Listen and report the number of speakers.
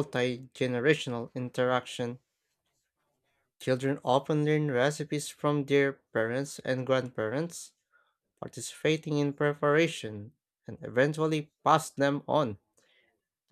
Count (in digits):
1